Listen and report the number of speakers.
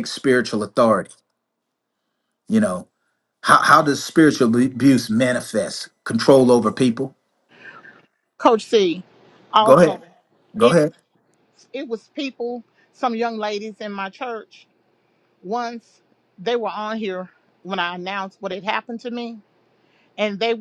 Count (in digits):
2